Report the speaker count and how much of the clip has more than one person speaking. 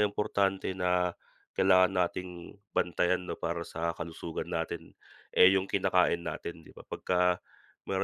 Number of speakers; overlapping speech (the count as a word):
one, no overlap